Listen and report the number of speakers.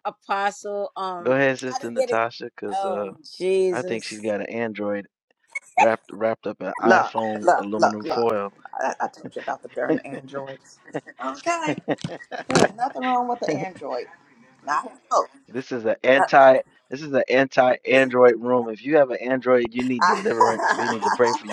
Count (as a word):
three